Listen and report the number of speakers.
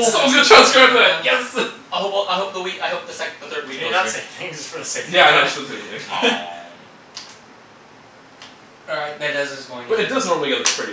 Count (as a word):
four